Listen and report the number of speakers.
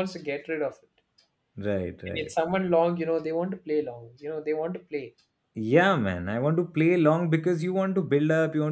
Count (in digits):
2